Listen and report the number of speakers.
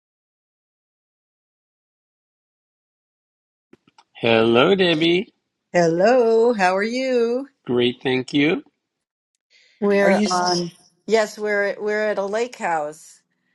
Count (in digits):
3